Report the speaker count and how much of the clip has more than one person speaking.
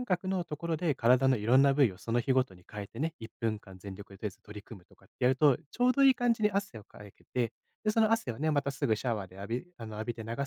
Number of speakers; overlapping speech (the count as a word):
one, no overlap